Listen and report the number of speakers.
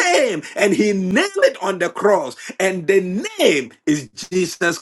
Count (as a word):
one